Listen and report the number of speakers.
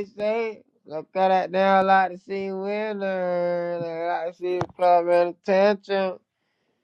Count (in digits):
1